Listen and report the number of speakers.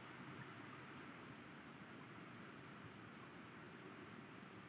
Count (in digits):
0